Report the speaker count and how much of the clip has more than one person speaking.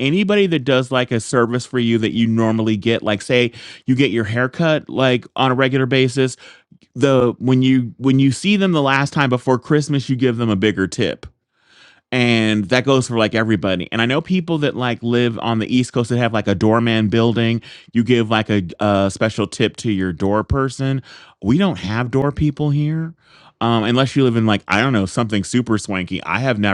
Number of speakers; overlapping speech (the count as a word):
one, no overlap